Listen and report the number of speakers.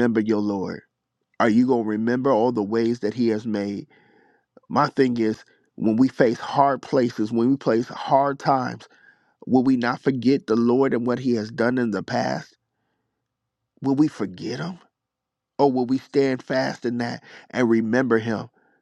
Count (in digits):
1